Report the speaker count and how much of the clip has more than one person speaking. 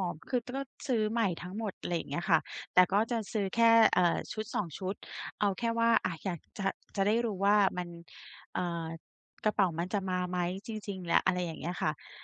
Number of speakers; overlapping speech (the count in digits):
1, no overlap